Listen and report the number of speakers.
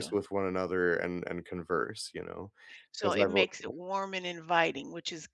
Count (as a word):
two